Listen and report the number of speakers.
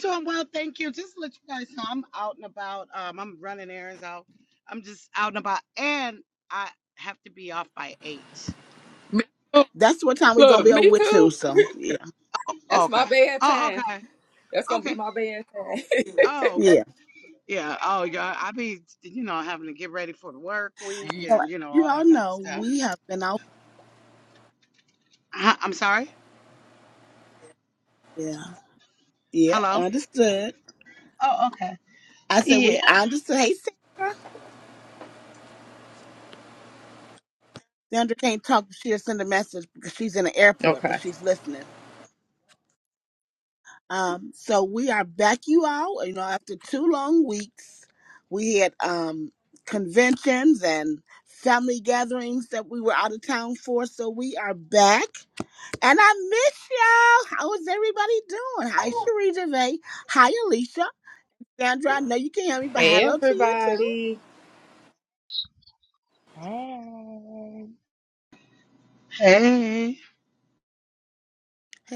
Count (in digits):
4